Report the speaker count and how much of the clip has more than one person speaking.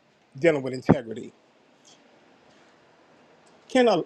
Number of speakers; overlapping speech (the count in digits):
1, no overlap